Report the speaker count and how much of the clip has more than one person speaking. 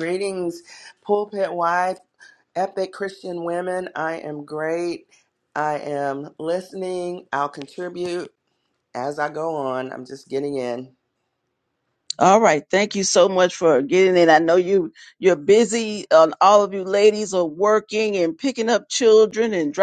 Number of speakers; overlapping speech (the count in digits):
2, no overlap